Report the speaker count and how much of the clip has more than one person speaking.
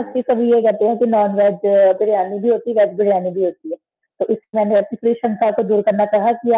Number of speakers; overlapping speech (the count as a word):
one, no overlap